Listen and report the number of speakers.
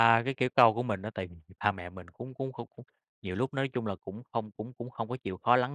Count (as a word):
one